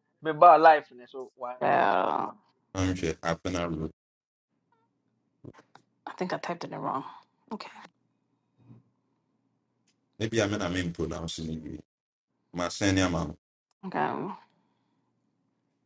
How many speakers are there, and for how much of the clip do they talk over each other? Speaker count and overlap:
3, about 1%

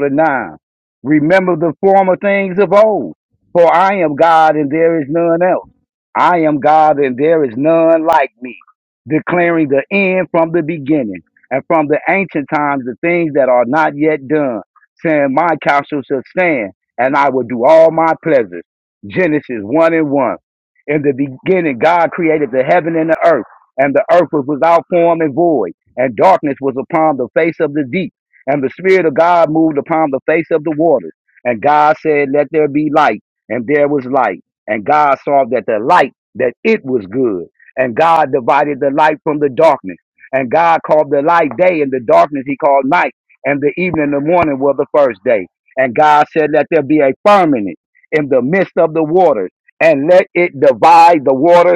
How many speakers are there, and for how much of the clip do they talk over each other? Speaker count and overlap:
1, no overlap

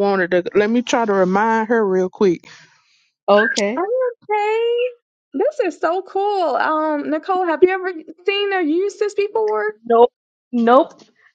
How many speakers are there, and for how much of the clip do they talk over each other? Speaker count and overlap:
3, under 1%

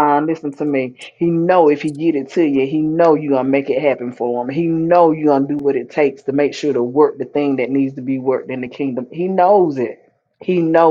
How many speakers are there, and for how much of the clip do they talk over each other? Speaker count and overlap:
1, no overlap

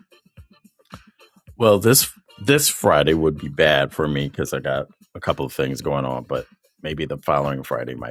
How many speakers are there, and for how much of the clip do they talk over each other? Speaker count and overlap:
1, no overlap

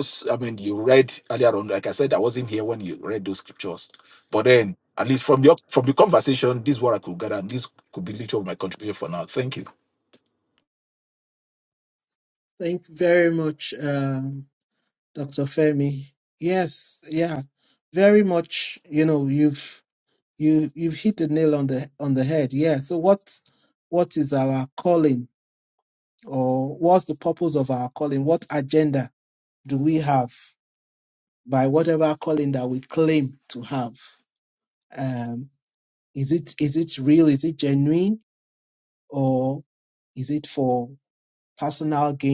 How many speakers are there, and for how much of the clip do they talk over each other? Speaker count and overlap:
2, no overlap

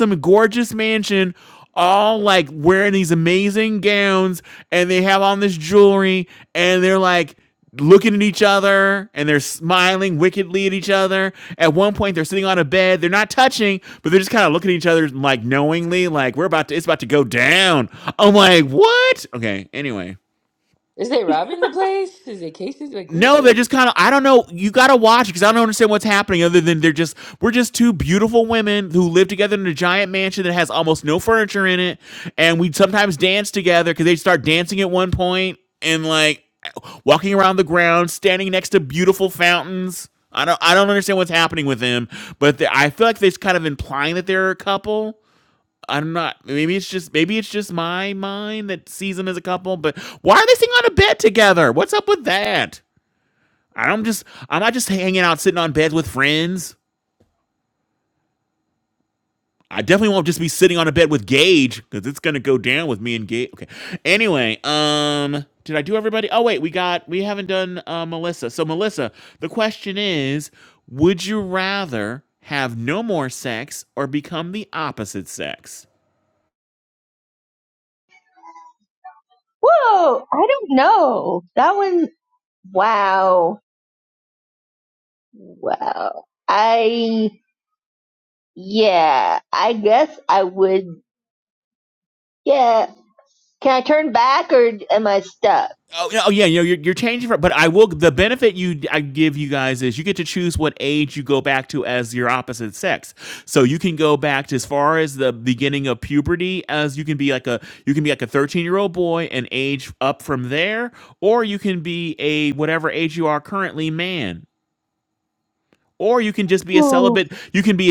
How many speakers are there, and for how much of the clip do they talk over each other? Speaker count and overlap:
3, about 1%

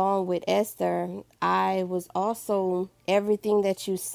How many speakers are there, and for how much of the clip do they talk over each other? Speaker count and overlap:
1, no overlap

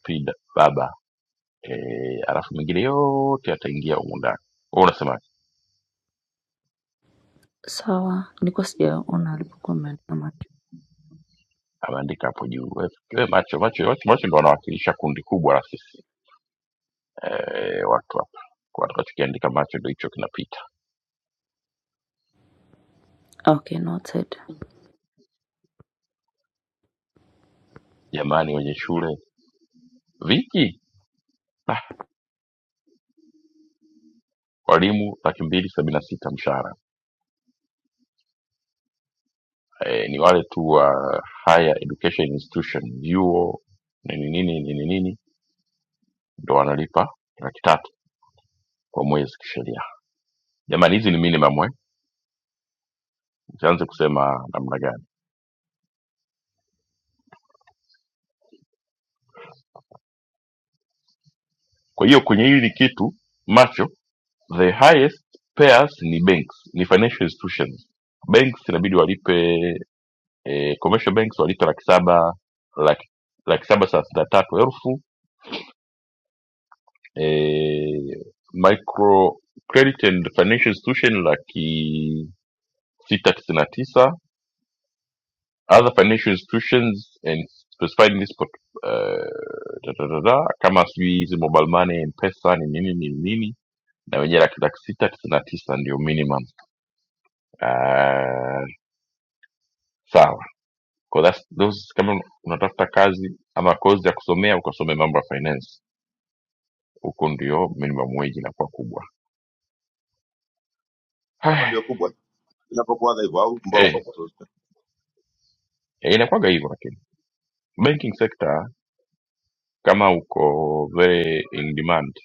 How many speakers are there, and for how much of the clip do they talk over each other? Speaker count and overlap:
3, under 1%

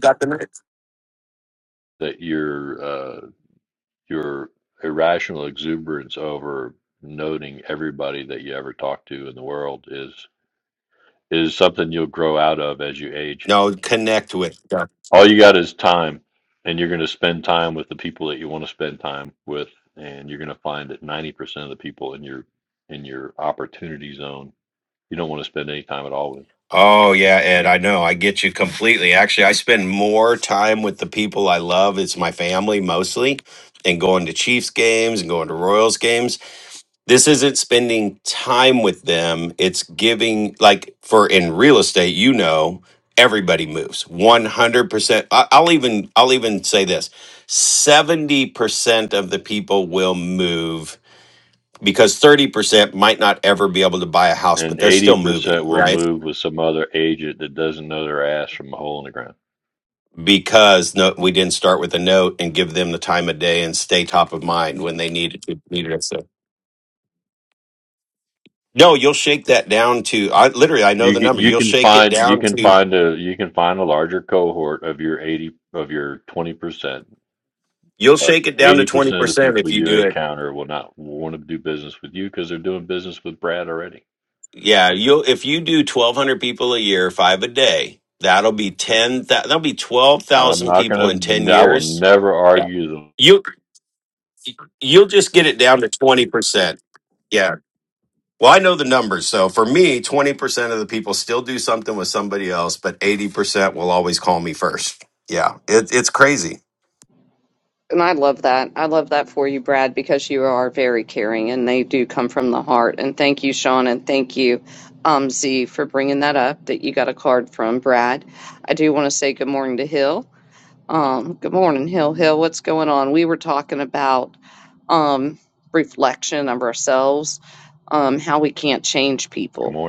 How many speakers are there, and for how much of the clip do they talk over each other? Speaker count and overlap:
3, about 5%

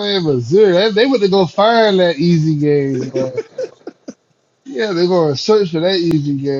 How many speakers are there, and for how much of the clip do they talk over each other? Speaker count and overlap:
1, no overlap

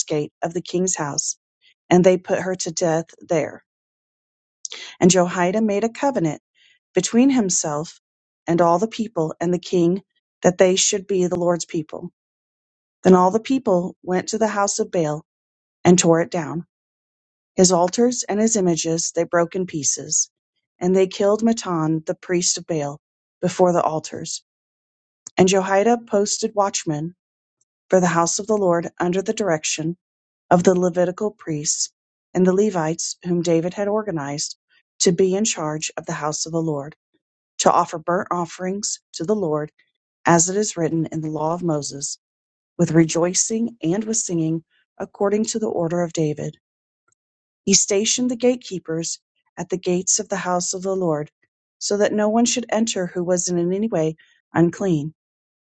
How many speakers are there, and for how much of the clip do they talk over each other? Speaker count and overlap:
1, no overlap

